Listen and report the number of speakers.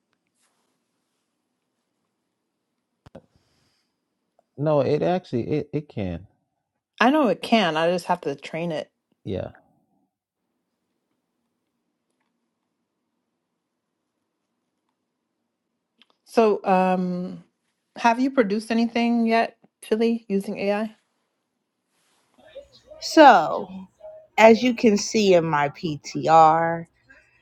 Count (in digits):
3